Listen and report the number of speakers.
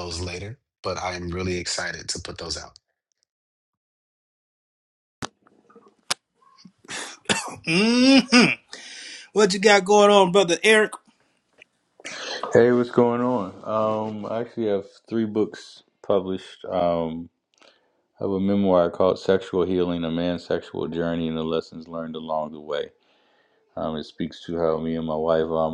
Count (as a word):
three